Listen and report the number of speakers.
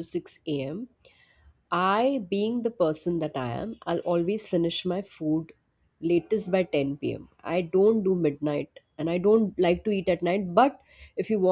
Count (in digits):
1